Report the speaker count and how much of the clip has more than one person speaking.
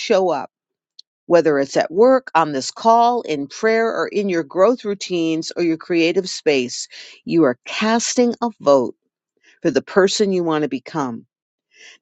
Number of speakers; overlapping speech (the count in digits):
1, no overlap